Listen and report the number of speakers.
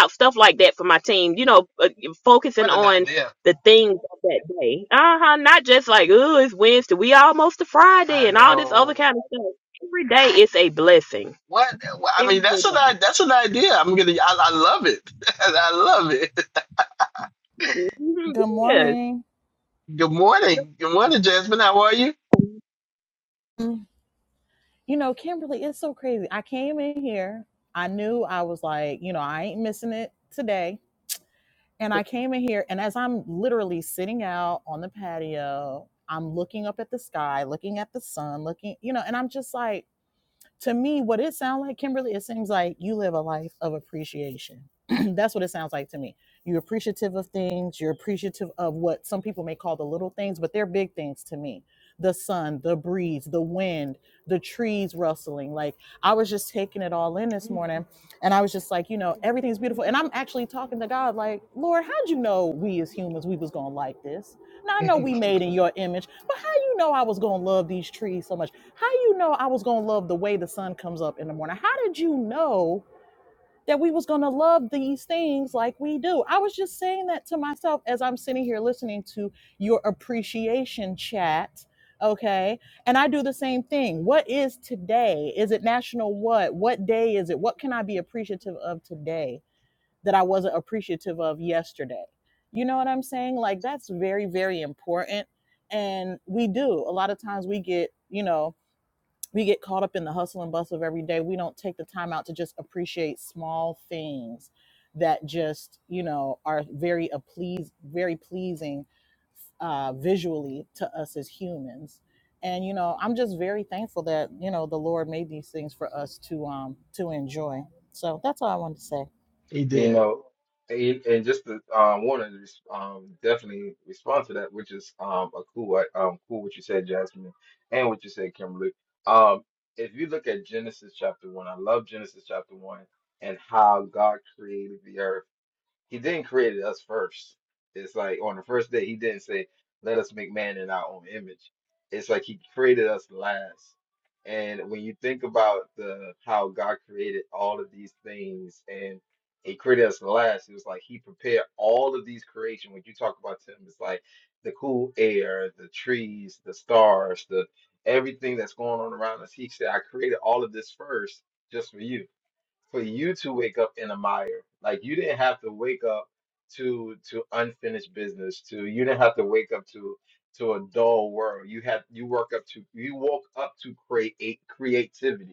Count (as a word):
four